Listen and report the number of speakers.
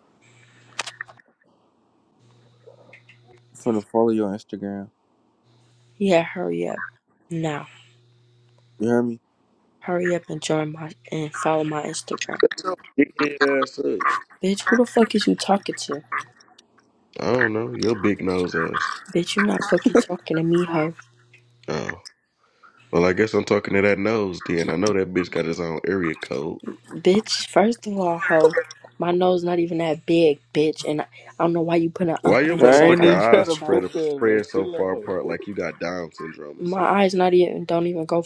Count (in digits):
3